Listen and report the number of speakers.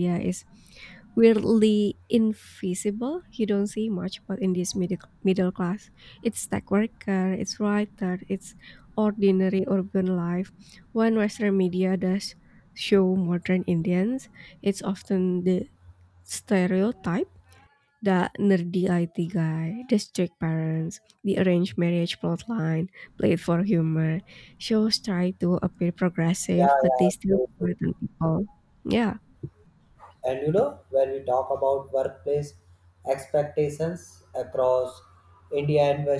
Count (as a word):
two